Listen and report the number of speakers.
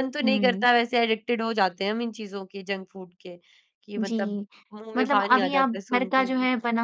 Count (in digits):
2